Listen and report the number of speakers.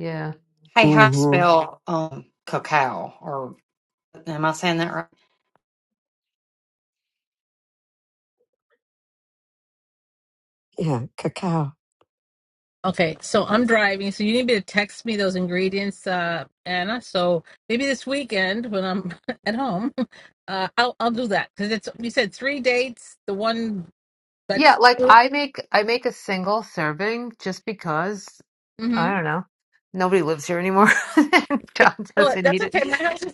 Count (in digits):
4